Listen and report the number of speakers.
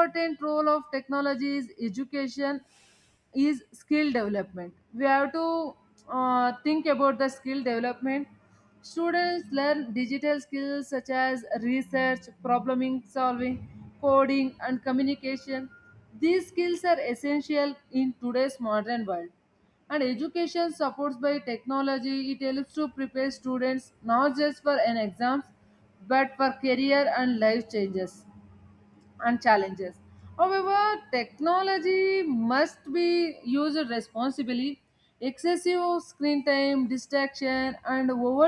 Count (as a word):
one